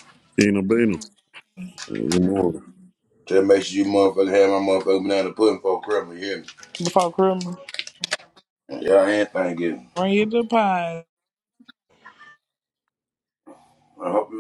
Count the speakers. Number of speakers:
3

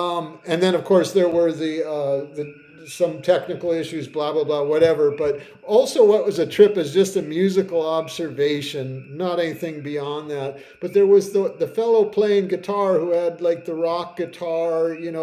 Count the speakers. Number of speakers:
1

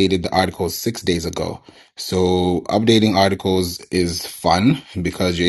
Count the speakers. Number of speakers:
1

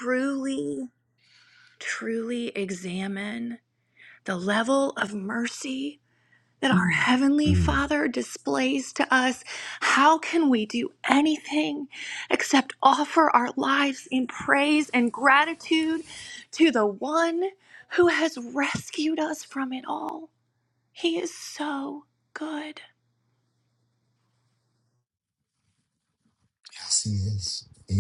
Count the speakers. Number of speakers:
2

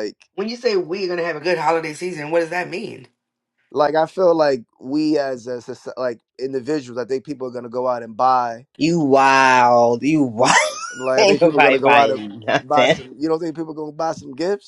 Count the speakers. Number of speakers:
3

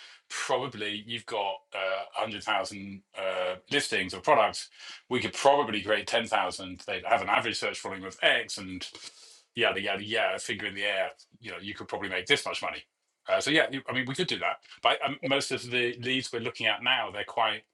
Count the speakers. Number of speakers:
1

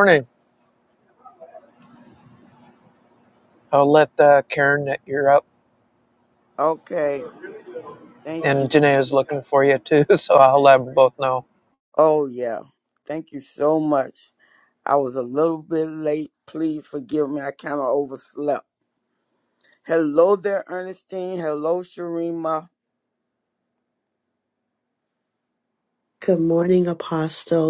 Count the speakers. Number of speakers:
3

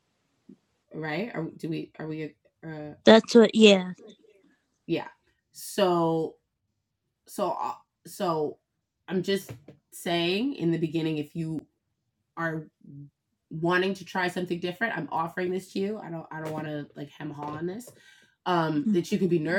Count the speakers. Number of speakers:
2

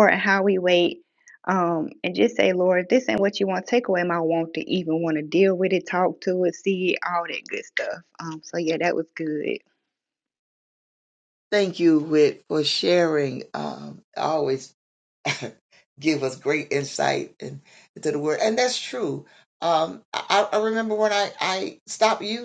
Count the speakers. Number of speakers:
2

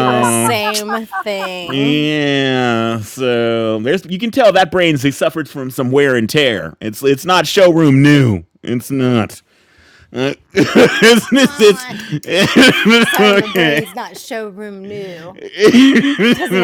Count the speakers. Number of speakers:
2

